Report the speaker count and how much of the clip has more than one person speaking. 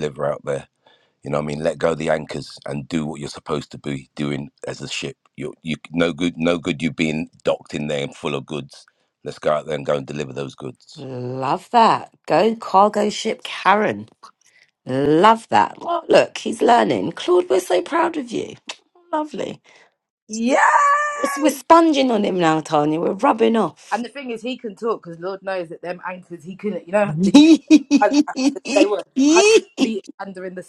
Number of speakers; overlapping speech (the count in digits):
3, under 1%